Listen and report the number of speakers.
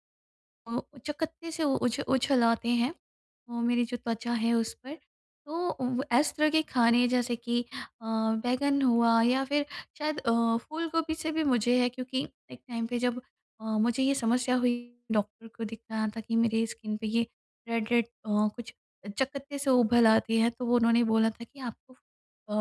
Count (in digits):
1